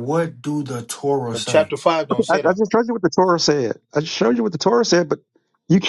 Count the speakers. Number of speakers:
3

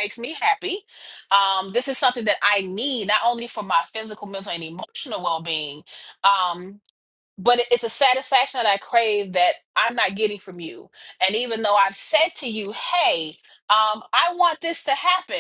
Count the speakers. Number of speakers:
1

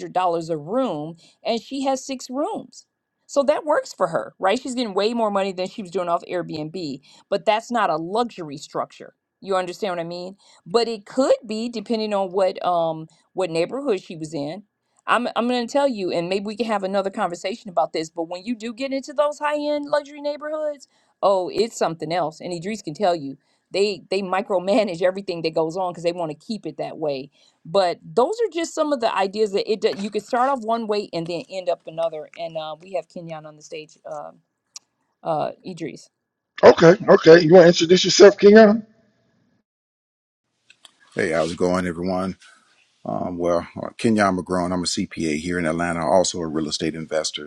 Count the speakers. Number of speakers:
3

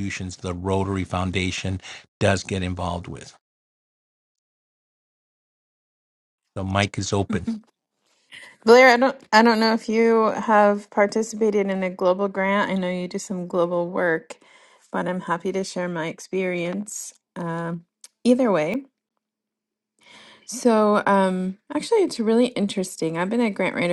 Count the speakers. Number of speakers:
2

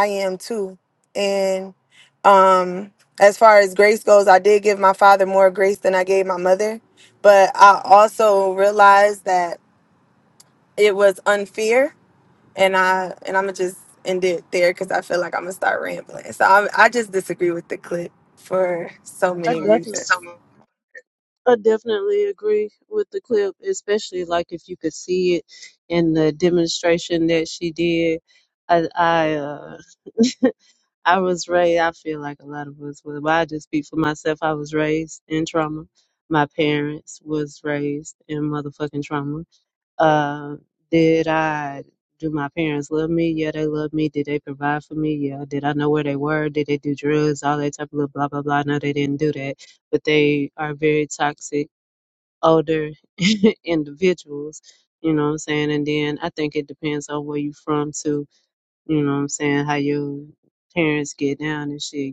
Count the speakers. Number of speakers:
2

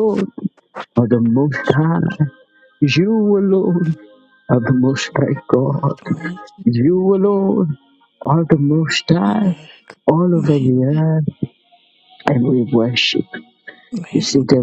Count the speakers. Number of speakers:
2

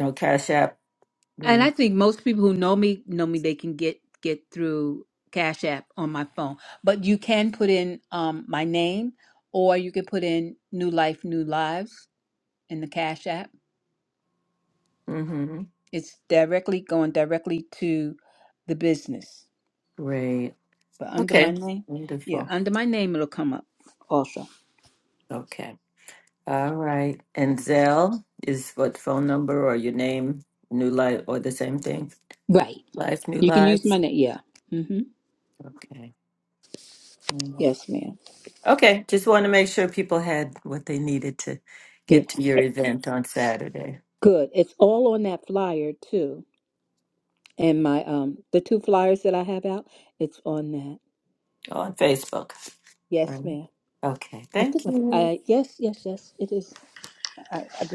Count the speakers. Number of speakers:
2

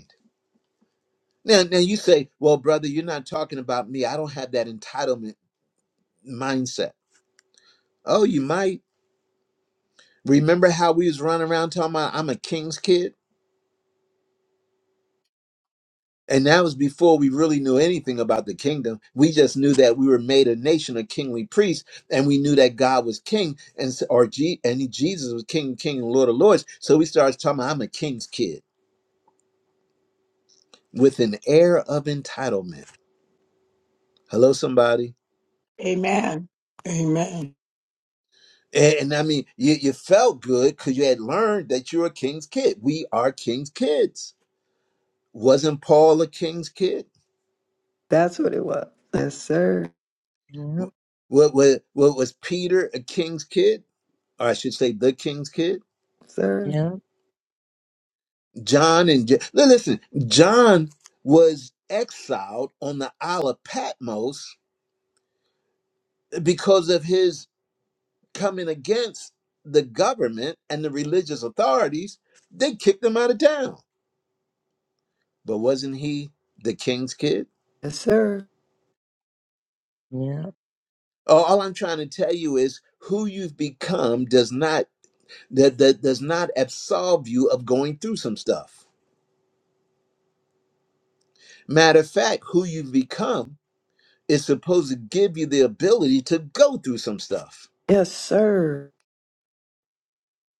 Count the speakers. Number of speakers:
4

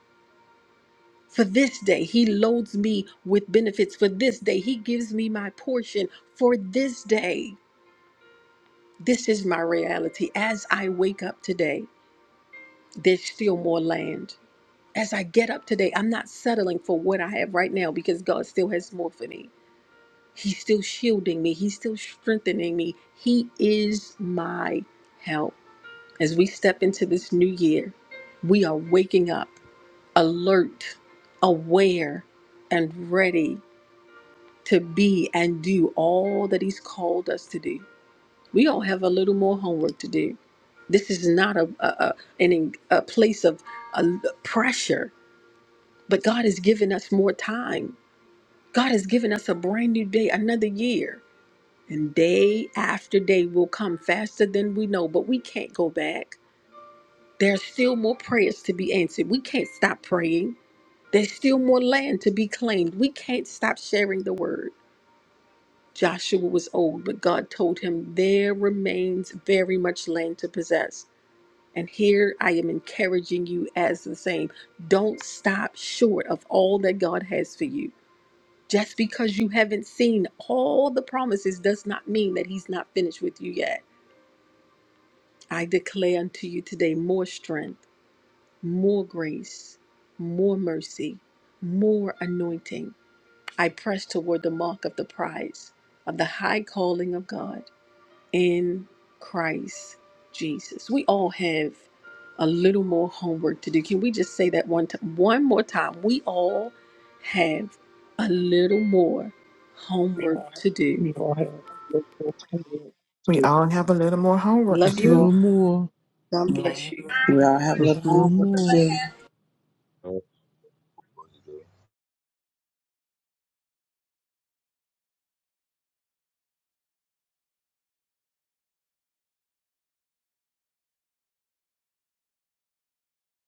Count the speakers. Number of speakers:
5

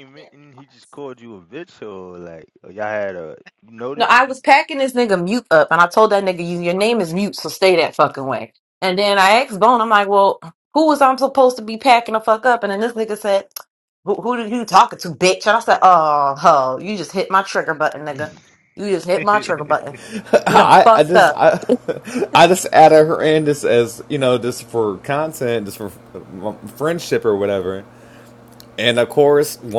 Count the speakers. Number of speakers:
3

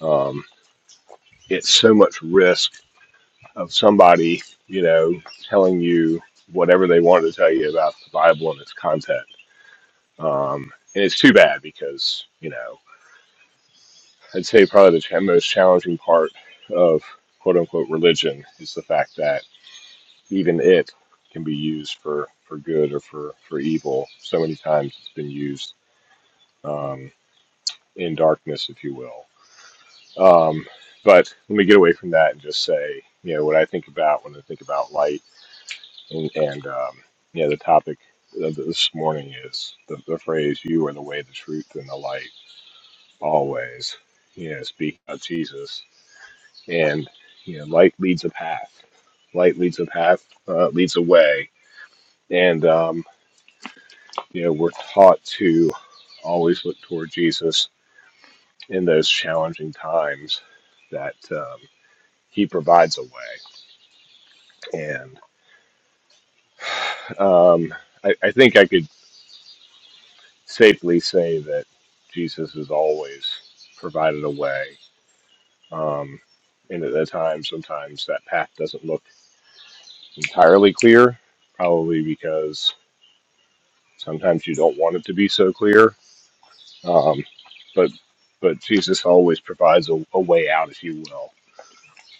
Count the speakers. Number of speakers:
1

